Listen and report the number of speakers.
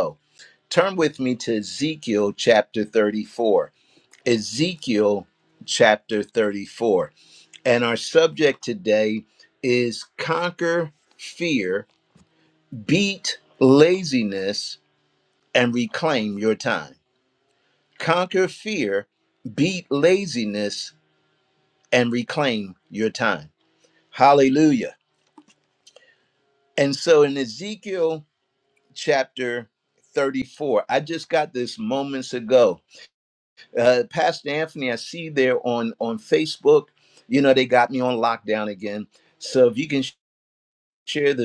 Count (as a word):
one